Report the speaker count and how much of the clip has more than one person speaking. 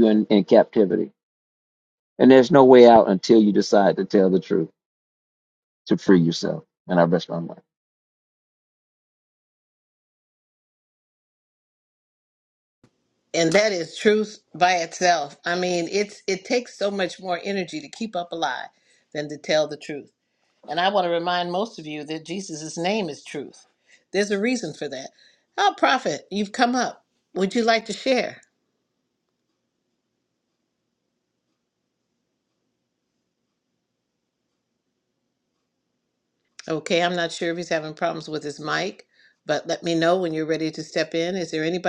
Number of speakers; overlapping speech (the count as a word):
two, no overlap